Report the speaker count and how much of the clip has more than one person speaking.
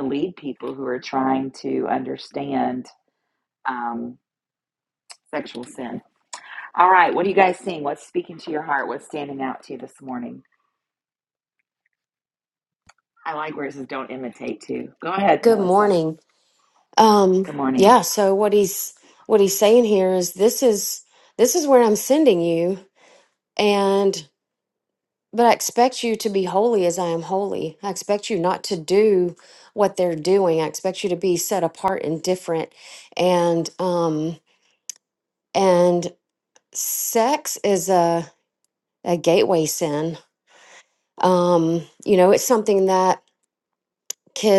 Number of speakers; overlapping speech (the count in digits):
2, about 2%